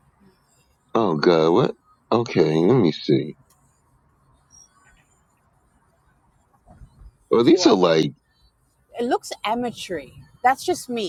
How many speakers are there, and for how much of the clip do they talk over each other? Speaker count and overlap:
2, about 2%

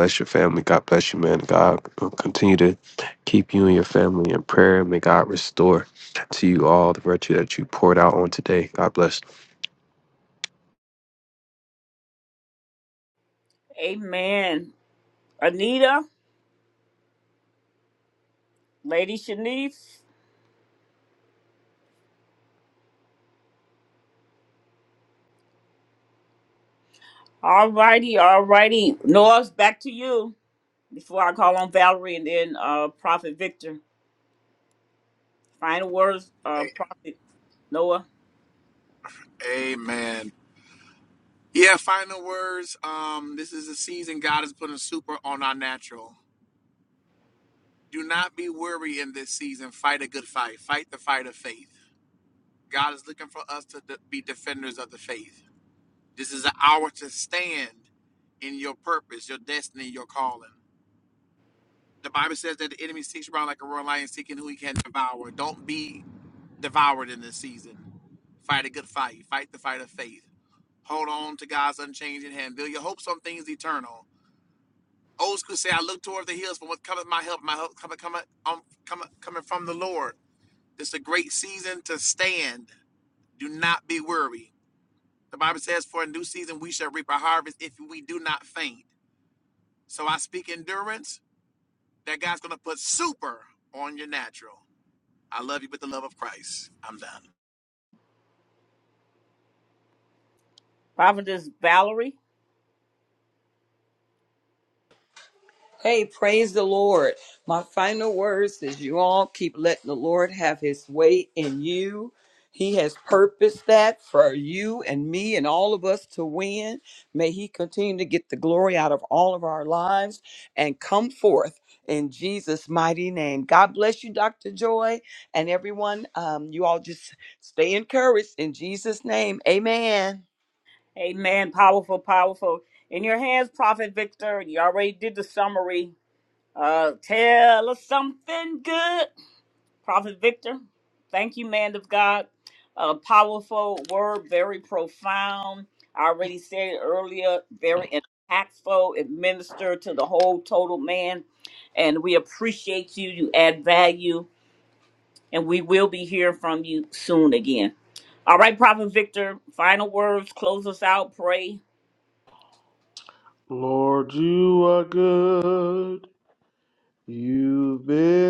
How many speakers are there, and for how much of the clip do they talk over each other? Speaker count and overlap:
5, under 1%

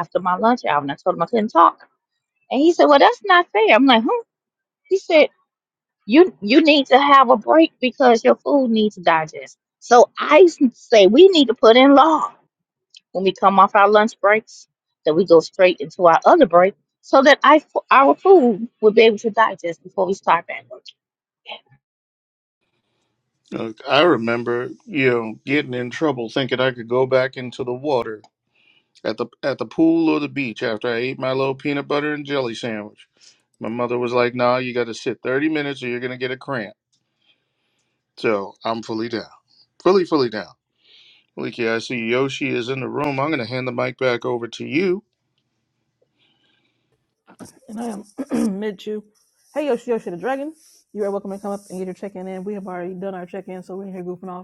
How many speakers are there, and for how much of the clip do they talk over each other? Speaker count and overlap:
3, no overlap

